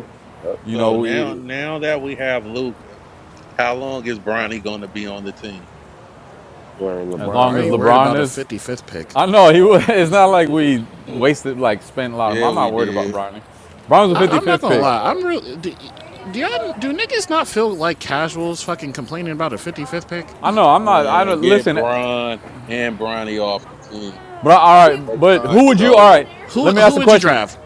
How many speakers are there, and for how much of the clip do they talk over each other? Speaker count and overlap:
four, about 29%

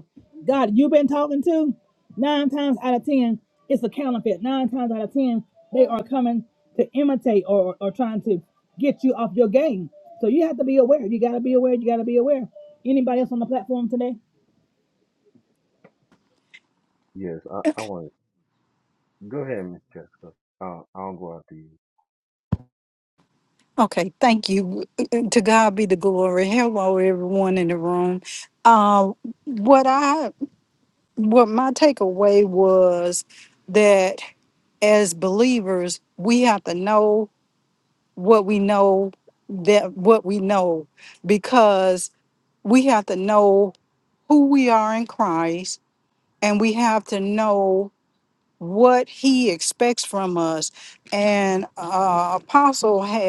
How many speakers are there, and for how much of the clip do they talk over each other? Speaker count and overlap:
three, under 1%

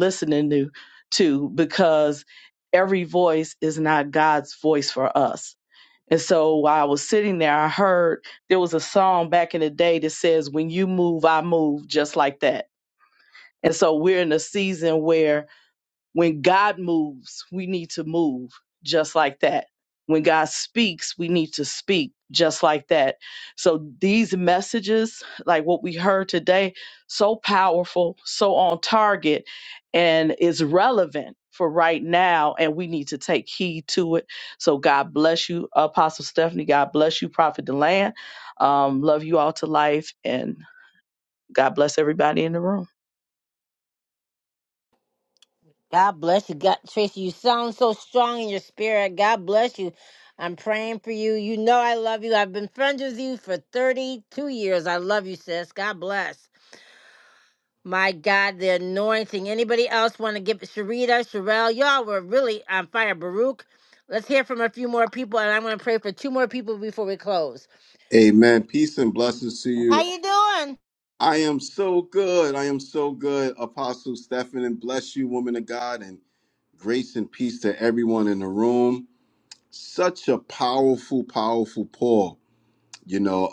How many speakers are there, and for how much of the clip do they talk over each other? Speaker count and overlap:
three, under 1%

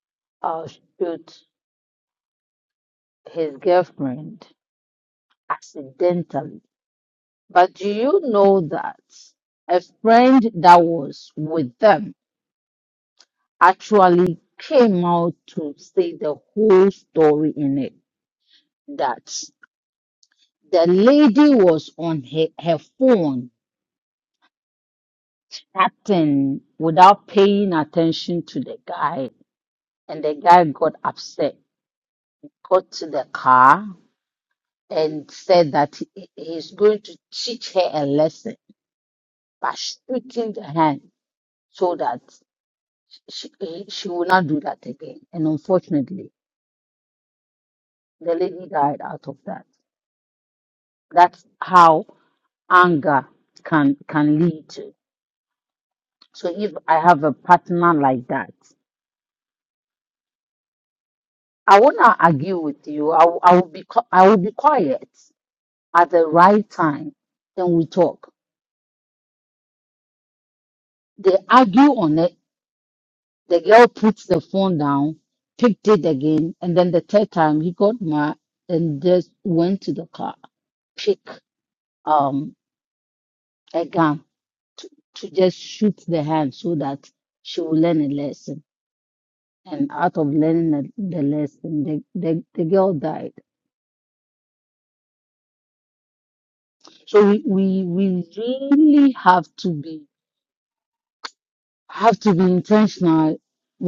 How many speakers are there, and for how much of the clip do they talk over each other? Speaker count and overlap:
one, no overlap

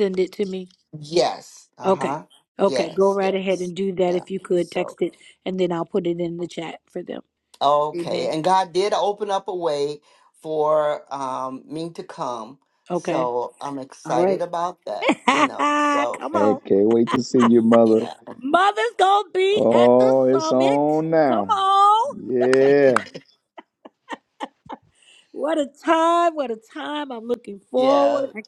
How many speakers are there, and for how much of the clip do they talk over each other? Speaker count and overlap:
three, about 17%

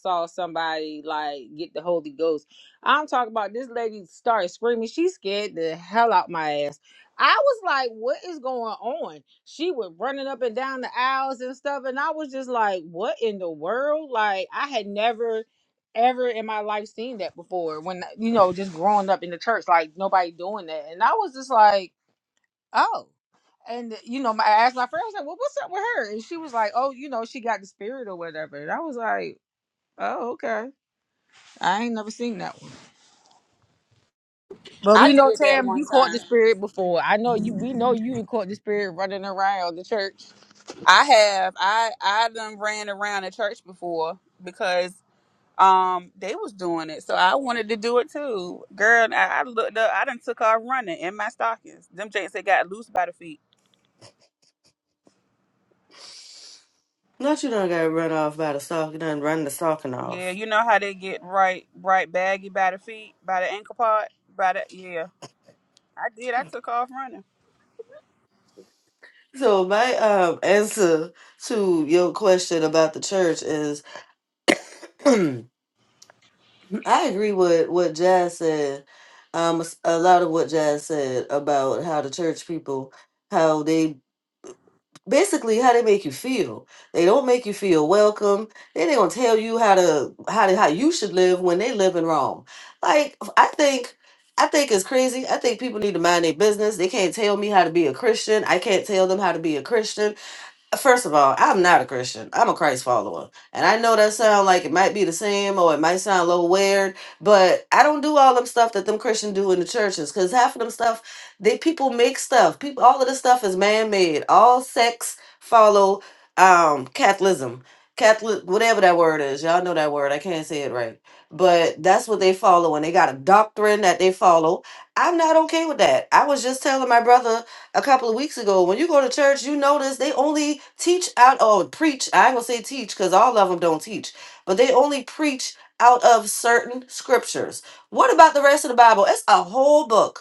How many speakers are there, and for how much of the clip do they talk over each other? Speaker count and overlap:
three, about 1%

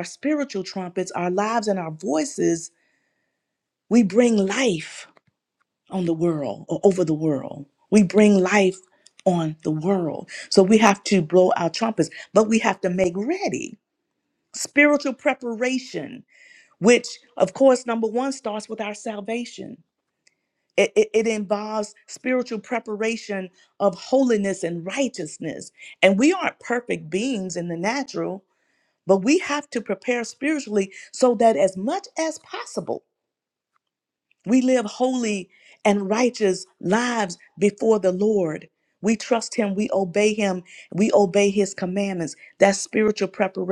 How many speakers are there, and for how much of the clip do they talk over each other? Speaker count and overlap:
one, no overlap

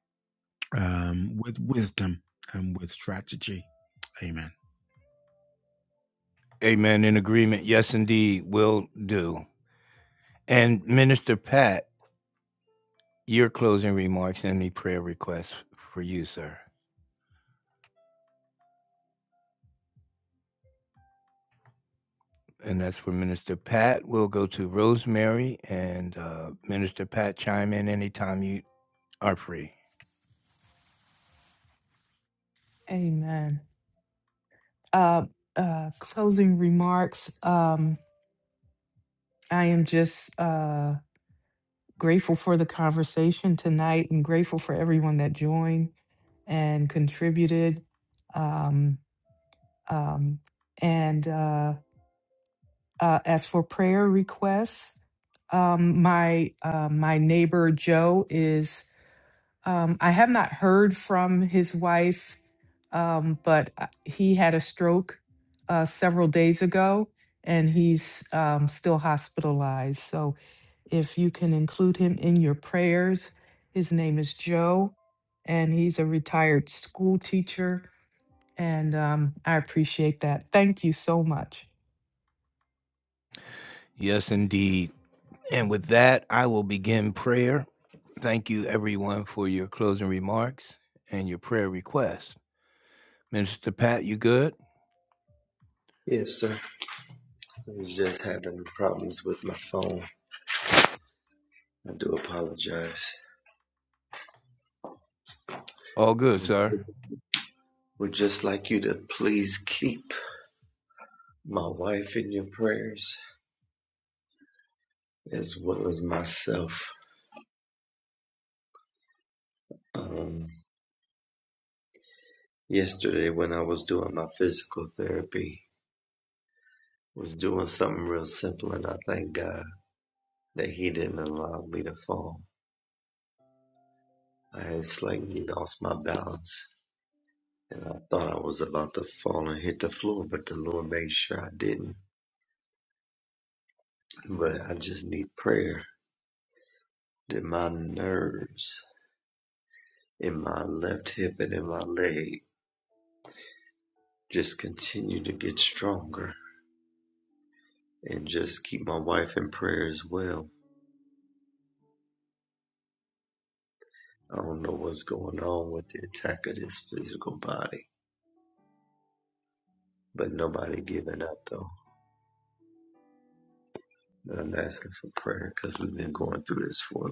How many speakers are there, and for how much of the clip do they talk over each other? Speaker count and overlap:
four, under 1%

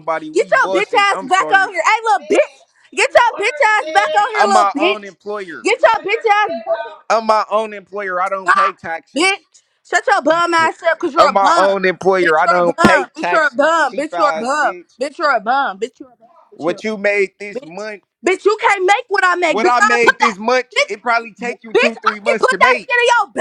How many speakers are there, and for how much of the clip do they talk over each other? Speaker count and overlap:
two, about 35%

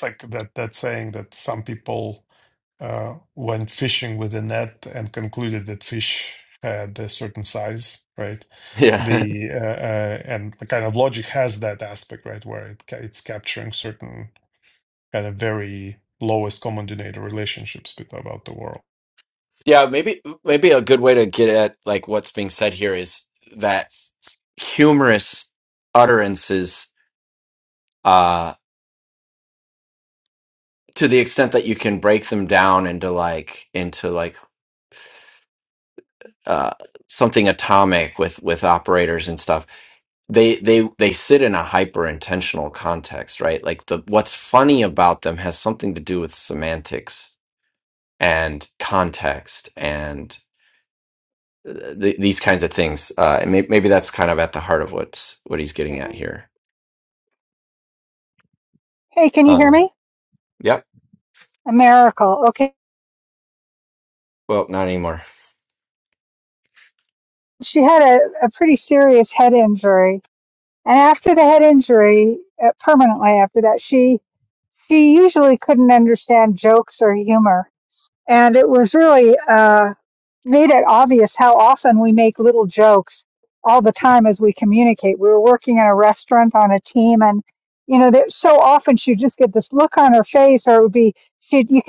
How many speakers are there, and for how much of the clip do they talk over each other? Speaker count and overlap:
three, about 1%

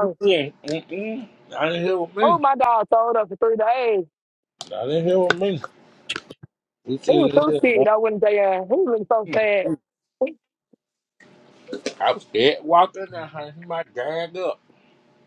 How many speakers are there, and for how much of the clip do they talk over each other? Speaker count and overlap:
two, about 10%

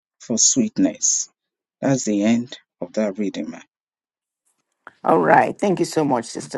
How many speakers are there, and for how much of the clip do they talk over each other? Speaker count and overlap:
two, no overlap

